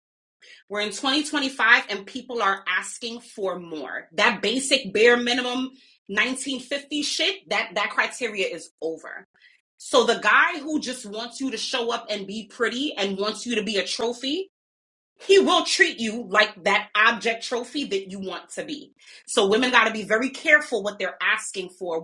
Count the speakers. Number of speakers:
one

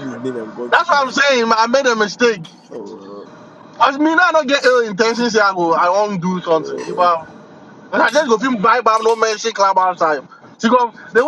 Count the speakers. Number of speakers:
two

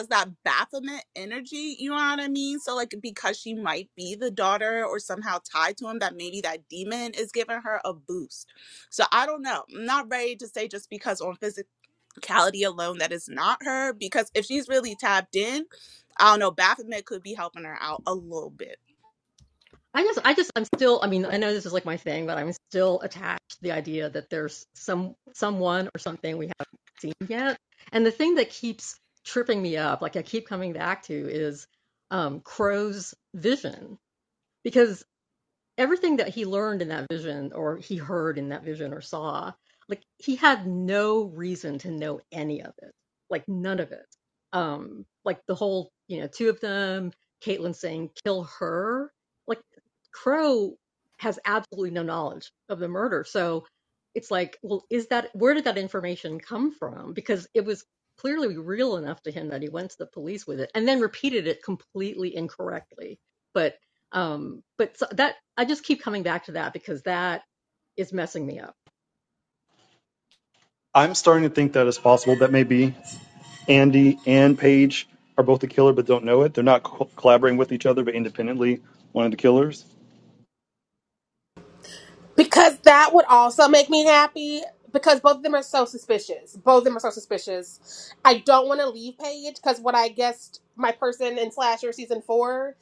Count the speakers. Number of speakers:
four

